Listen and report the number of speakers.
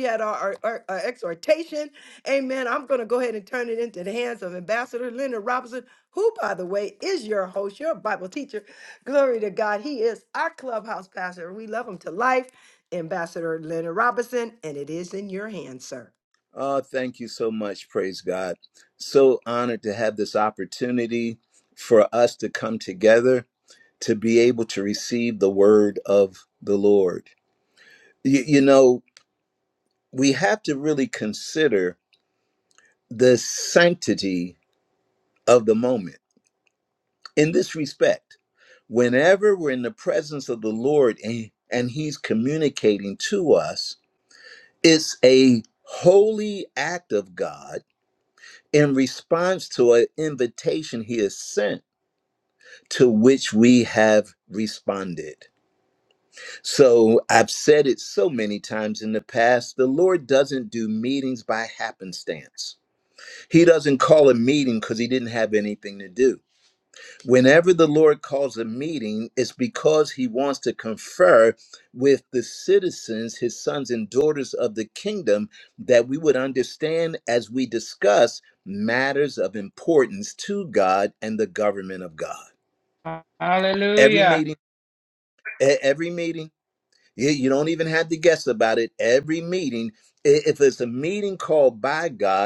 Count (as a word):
three